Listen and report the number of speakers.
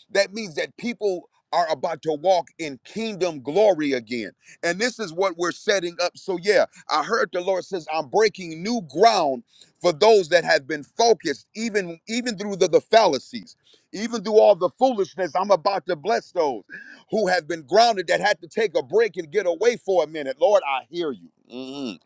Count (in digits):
1